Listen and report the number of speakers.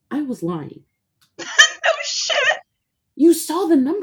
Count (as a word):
two